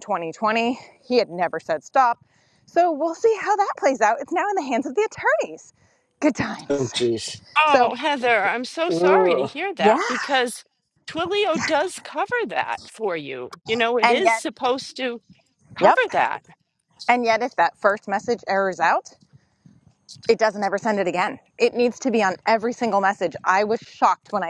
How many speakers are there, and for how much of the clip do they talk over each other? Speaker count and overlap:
3, about 8%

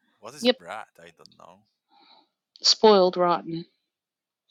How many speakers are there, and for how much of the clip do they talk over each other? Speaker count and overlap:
2, about 4%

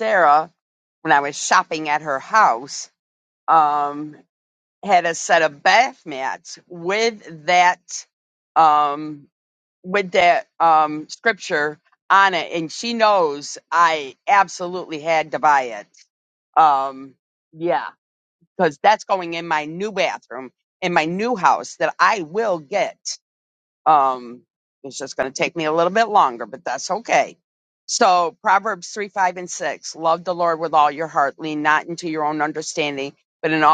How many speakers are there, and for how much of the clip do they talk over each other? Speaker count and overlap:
1, no overlap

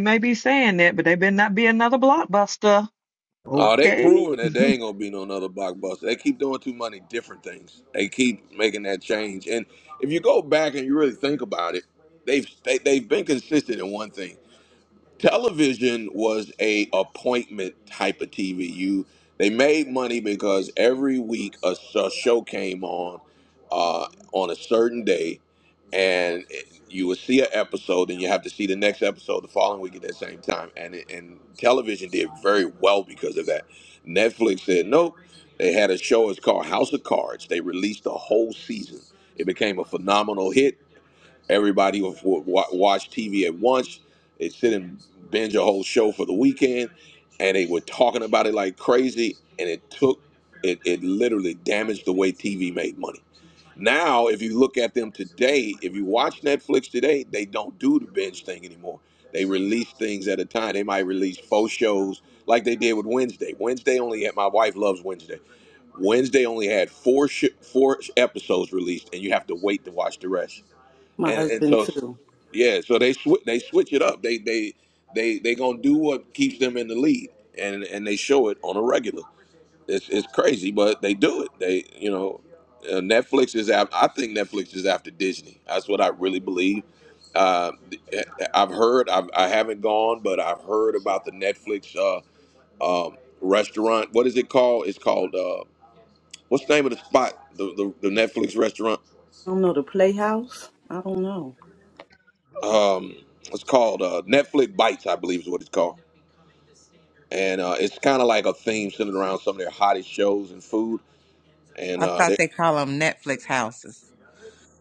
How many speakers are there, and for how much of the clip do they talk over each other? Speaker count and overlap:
4, about 2%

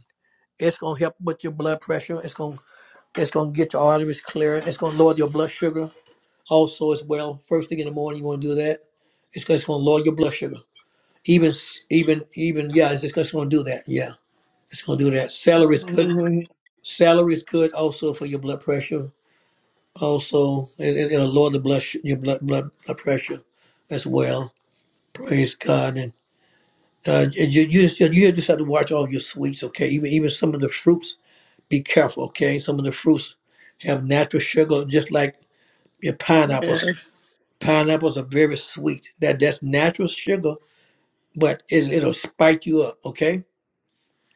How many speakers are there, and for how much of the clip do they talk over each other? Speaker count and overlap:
2, about 2%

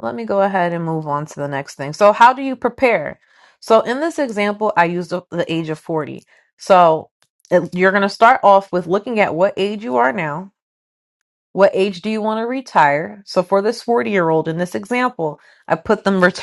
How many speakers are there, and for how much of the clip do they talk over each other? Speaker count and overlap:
1, no overlap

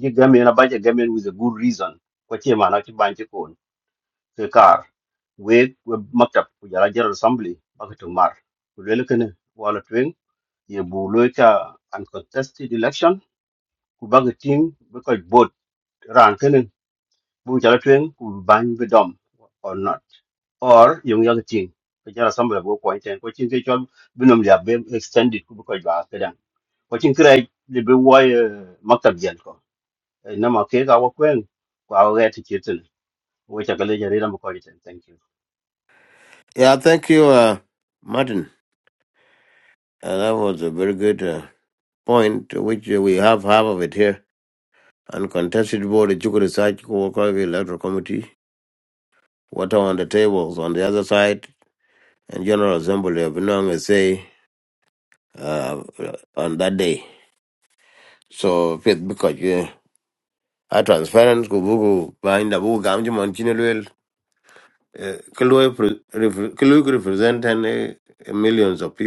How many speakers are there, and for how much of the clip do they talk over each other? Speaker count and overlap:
2, no overlap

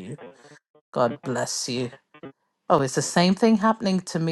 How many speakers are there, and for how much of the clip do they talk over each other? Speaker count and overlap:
1, no overlap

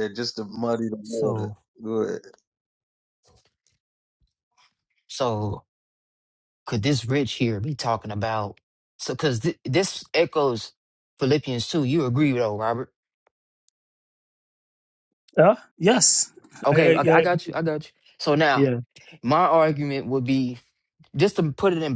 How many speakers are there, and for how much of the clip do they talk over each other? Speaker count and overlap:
3, about 4%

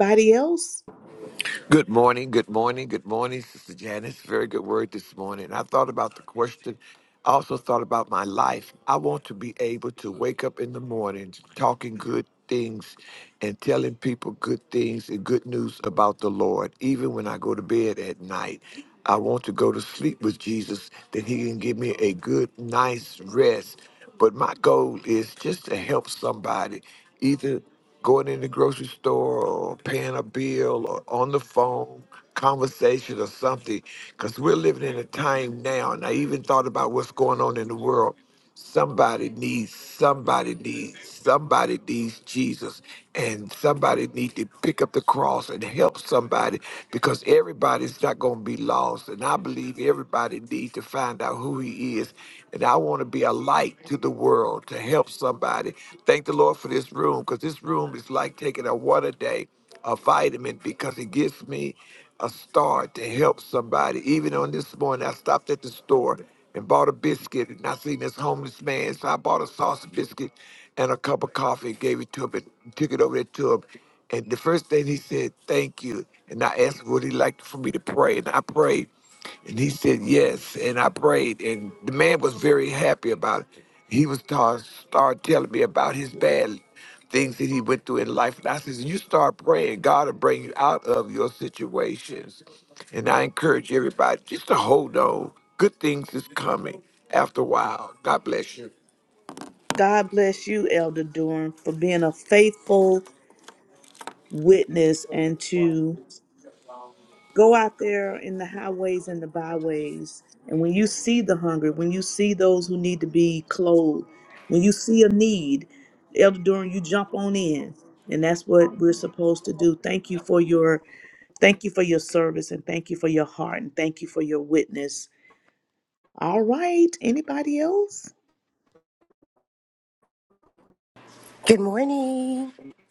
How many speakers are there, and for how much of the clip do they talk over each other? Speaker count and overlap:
3, no overlap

